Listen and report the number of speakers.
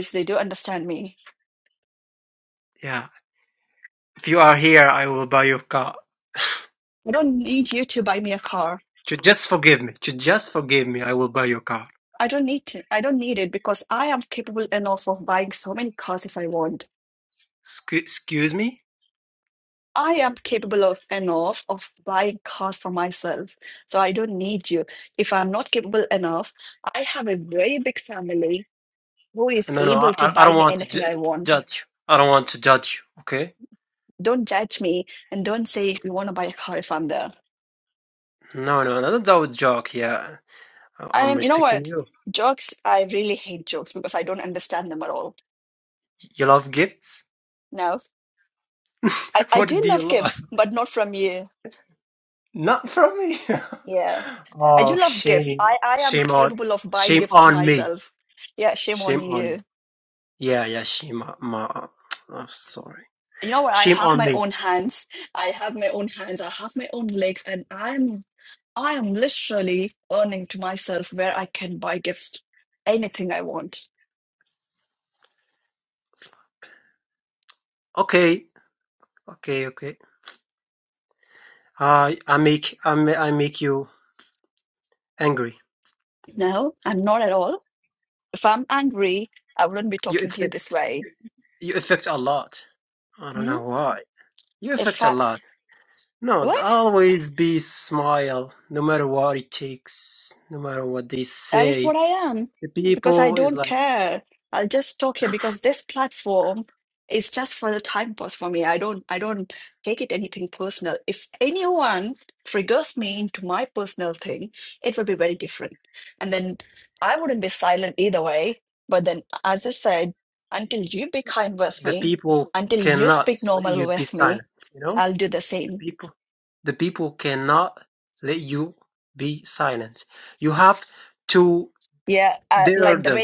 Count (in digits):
2